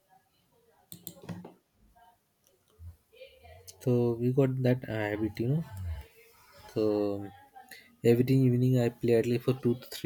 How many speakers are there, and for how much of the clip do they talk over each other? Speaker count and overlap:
one, no overlap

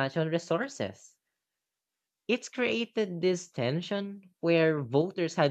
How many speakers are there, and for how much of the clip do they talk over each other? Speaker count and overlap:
one, no overlap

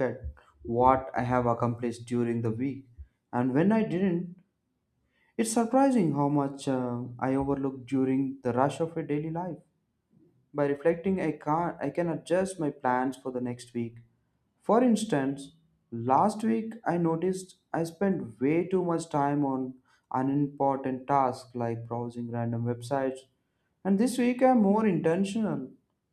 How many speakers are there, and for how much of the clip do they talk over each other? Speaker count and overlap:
one, no overlap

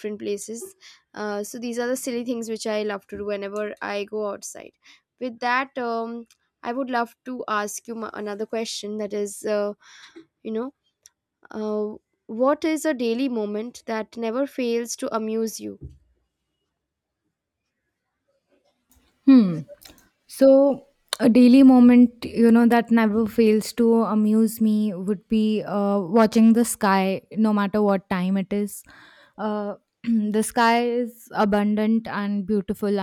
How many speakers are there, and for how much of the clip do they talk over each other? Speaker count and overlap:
two, no overlap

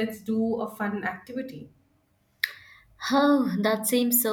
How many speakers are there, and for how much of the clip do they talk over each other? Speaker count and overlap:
two, no overlap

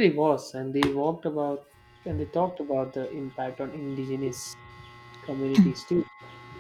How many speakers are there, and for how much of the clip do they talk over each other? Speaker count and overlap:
one, no overlap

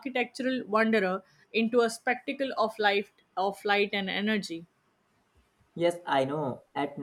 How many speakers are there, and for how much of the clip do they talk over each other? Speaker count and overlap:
two, no overlap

